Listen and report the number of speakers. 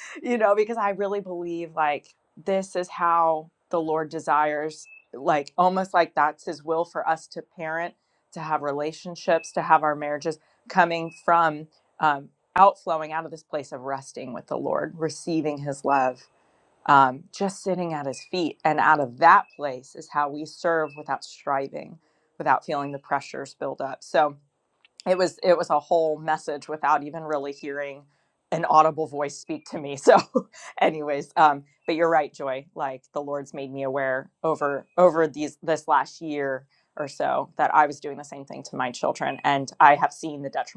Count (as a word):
one